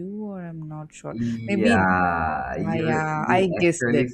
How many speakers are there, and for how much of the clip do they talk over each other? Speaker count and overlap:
two, about 51%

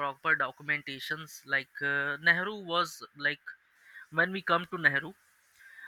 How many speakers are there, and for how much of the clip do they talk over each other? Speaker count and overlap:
one, no overlap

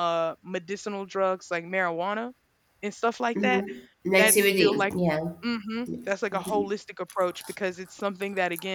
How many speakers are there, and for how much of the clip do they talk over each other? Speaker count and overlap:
two, about 16%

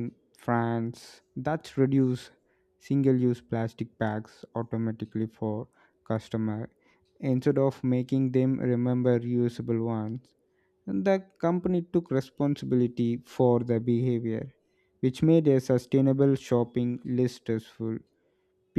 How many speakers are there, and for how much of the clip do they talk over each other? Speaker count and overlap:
one, no overlap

